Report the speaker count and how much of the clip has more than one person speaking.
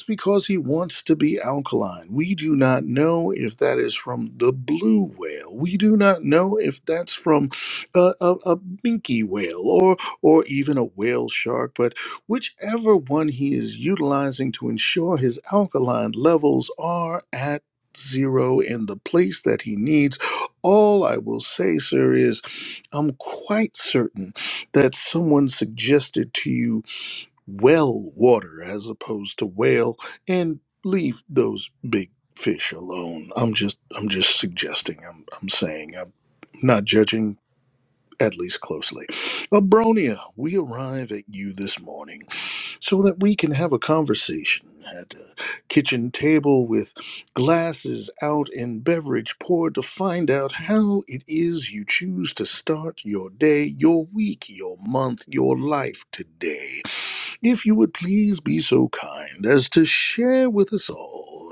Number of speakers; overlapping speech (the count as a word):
one, no overlap